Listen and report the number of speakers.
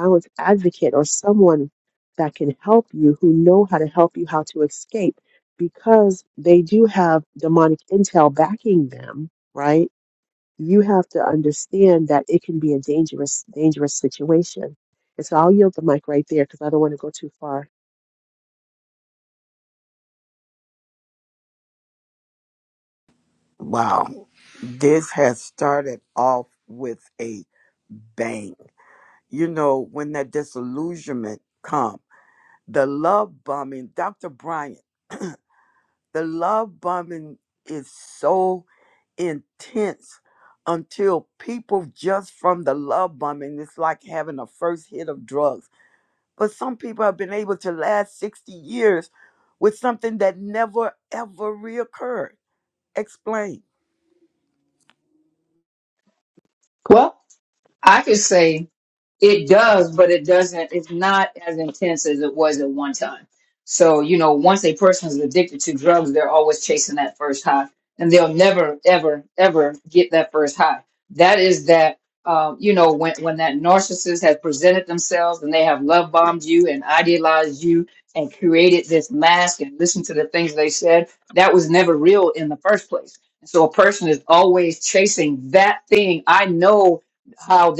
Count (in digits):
3